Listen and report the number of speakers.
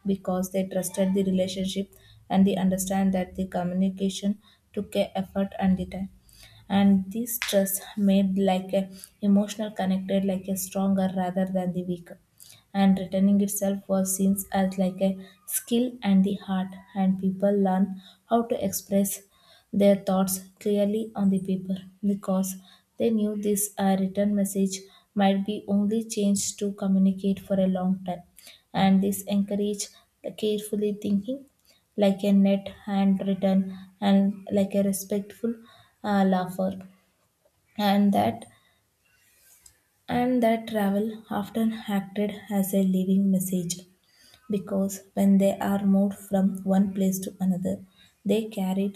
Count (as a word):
one